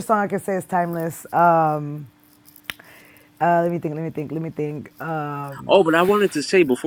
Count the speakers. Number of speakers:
2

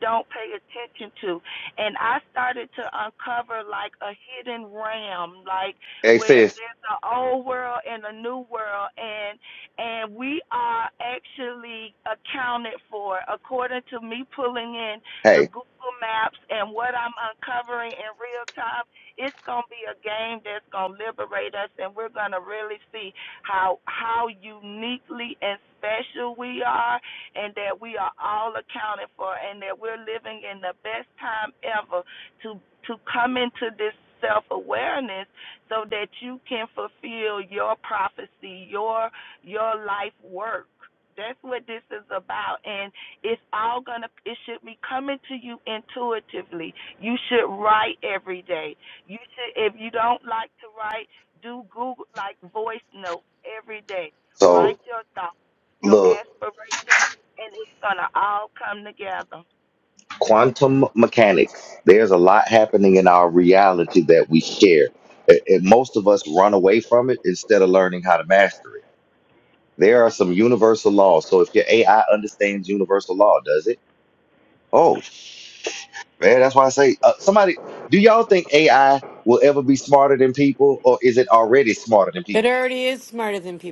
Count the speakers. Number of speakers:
3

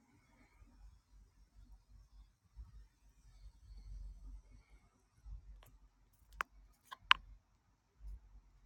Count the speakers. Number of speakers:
0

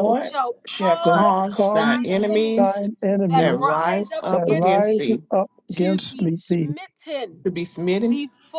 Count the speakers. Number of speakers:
3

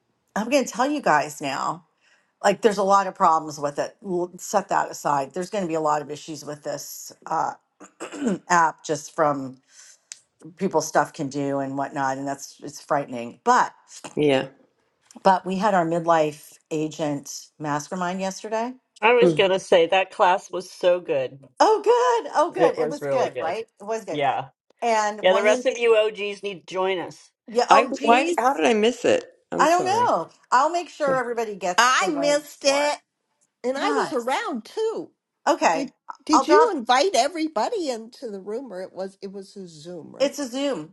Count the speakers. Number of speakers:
4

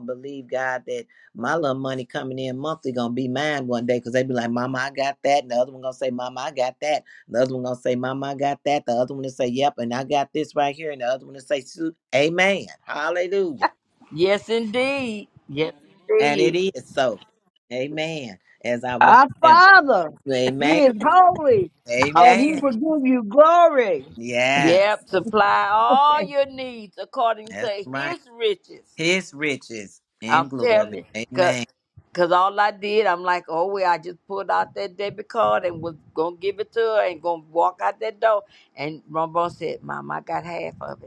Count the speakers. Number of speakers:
3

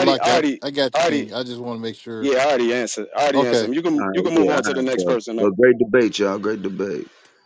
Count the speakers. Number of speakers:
3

